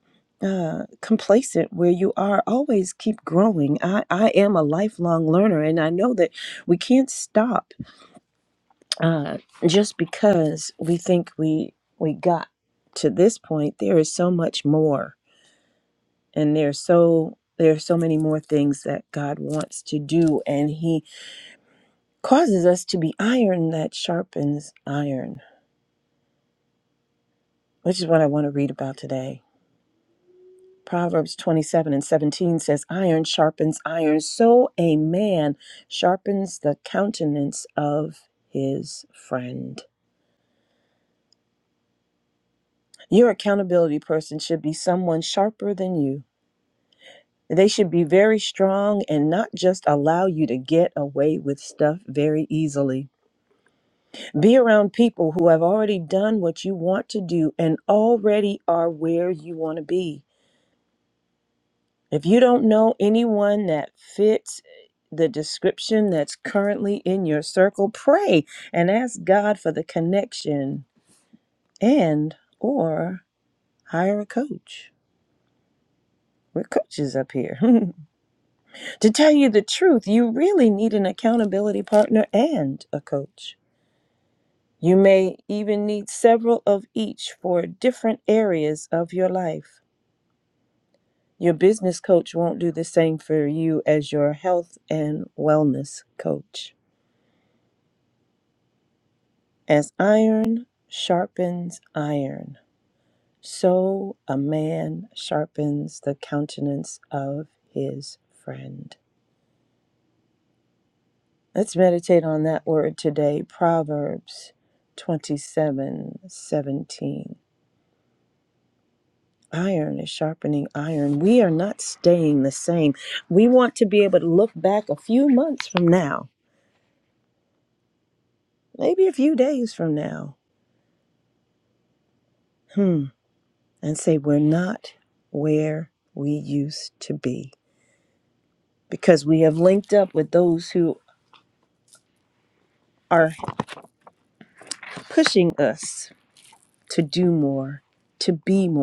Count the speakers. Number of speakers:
1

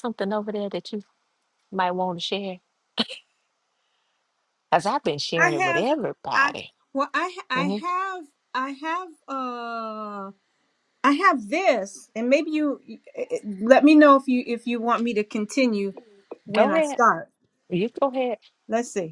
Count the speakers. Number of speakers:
2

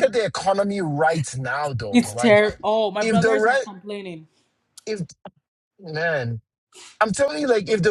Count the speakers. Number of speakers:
2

